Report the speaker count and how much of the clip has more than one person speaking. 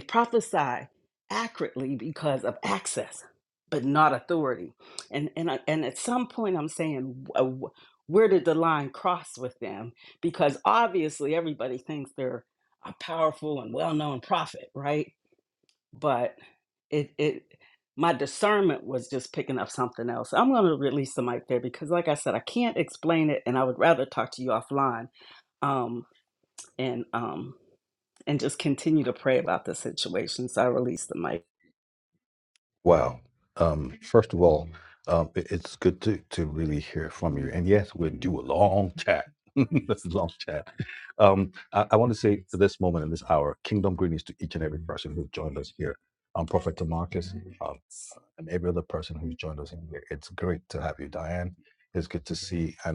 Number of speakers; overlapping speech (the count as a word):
two, no overlap